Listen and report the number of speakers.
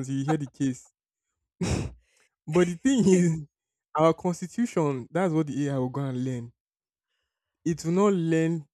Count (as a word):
one